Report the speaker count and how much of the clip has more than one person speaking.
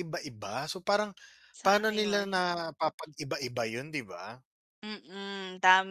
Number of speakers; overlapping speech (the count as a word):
two, about 12%